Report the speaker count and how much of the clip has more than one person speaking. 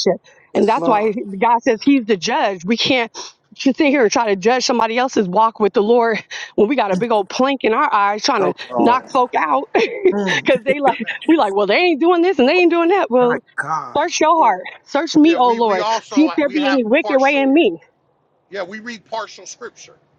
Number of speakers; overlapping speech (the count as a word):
three, about 22%